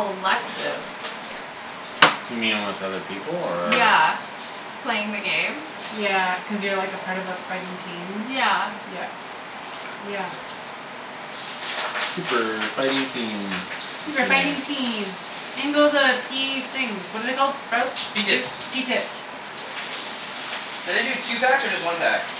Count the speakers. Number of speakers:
four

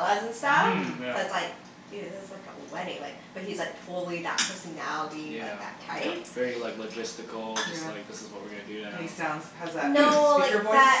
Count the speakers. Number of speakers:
three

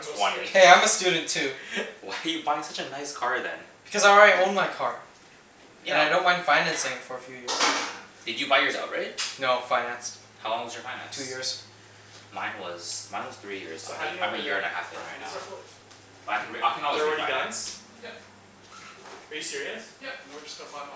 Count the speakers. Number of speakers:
four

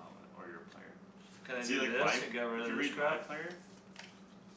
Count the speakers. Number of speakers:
two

